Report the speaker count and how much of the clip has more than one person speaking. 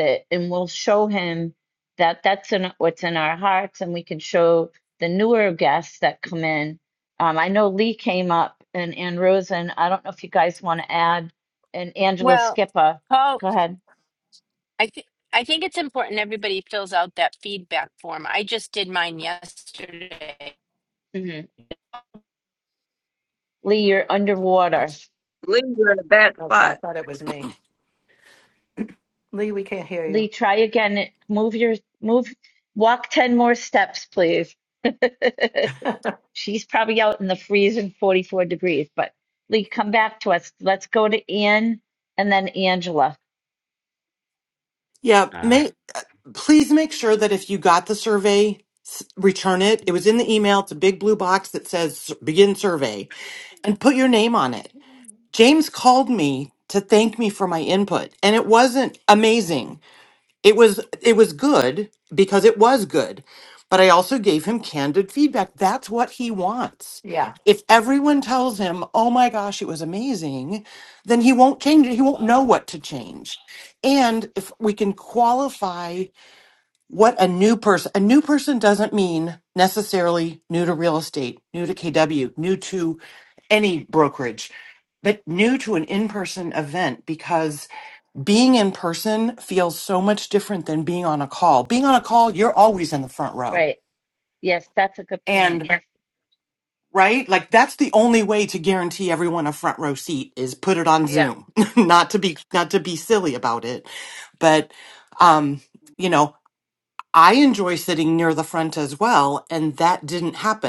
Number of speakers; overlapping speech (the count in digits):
5, about 2%